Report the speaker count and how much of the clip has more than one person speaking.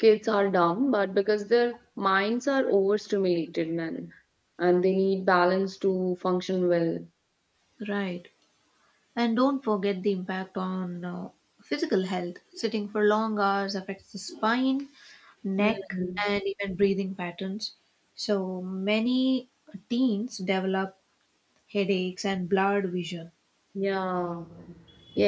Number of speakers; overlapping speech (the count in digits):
2, about 2%